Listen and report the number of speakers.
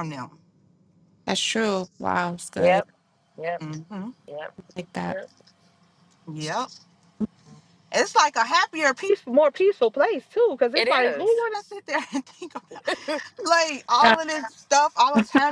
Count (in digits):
3